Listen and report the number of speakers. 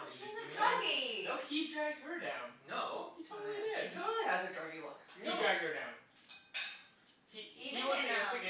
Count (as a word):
four